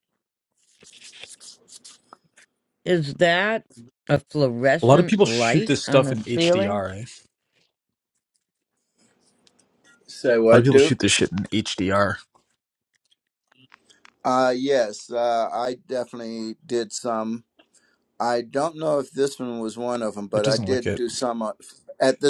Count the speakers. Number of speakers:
3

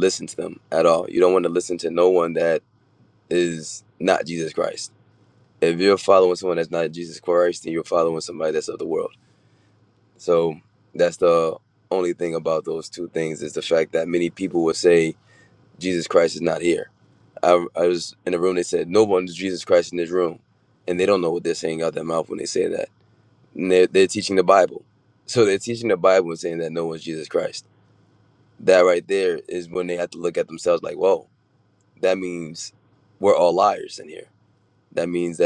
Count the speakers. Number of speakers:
1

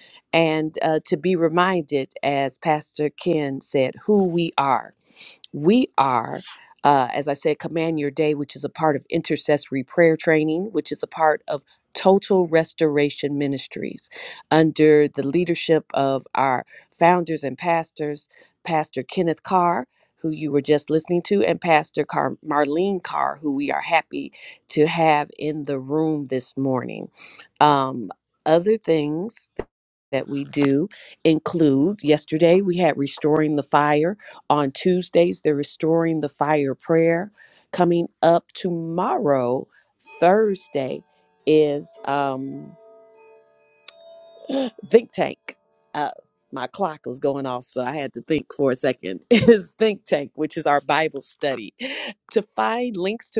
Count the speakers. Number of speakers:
1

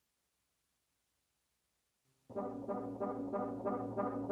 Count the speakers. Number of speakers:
0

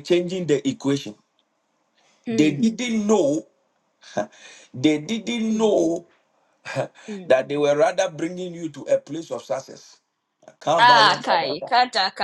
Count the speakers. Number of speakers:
2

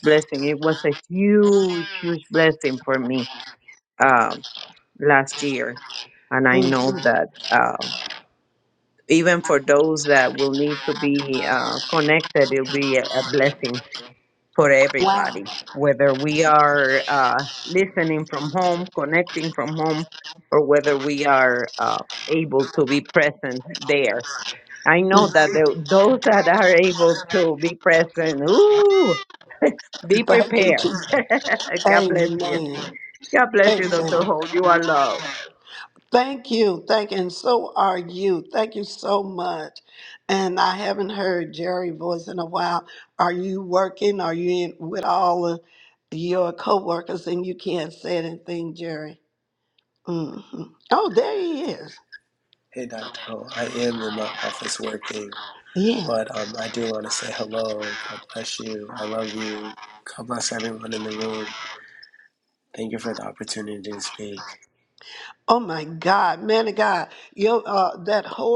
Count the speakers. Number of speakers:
3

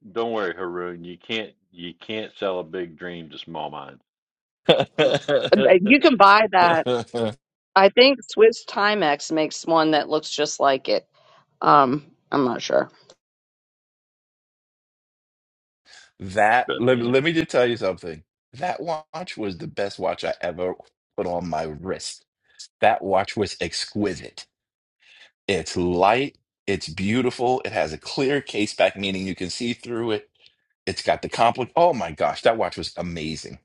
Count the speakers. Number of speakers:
3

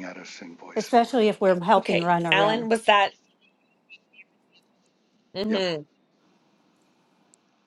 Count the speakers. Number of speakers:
3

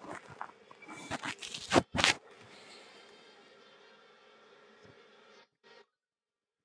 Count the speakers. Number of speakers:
0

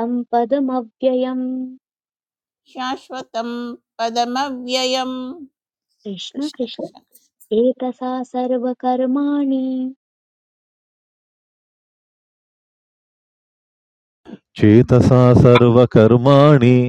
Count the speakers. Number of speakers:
3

